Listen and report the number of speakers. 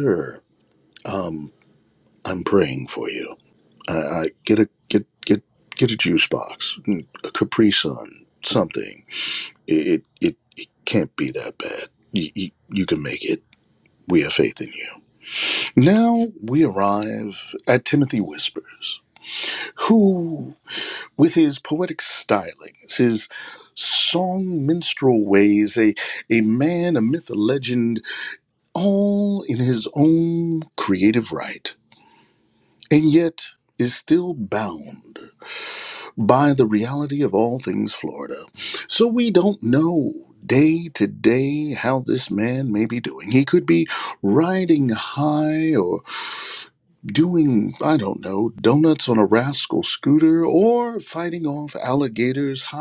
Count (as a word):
one